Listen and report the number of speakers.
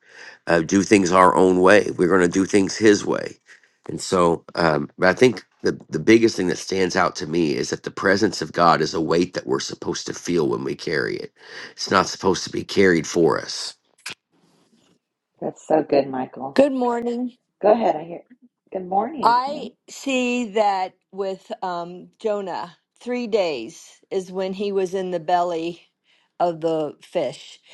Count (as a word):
three